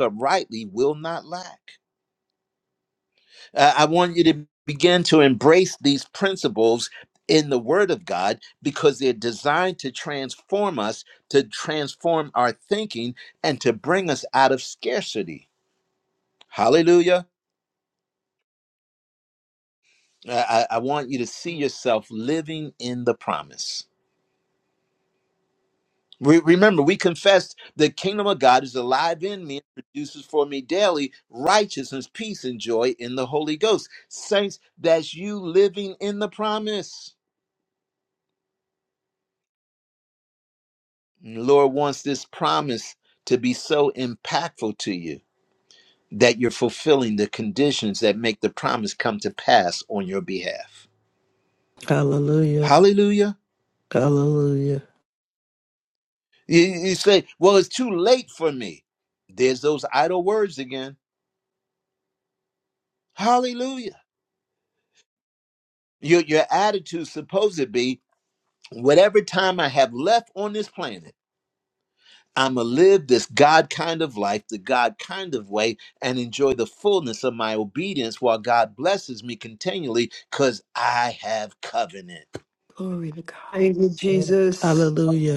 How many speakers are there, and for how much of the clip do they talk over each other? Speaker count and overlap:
3, under 1%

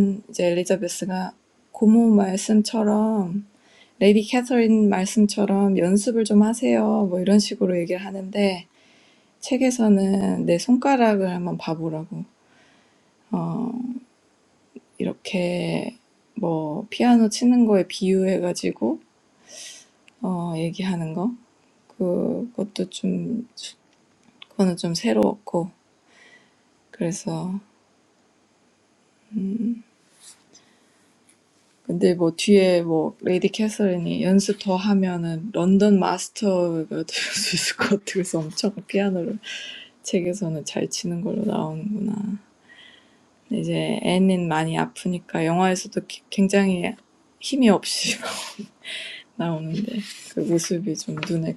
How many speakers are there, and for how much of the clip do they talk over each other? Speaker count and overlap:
1, no overlap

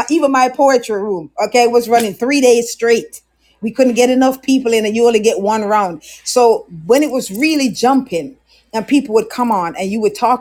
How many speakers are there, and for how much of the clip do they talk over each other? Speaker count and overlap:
1, no overlap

